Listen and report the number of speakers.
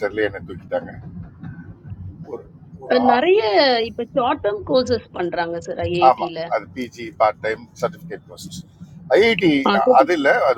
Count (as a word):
two